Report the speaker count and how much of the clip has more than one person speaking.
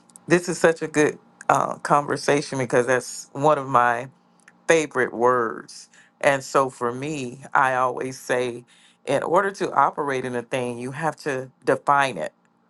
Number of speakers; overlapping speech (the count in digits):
1, no overlap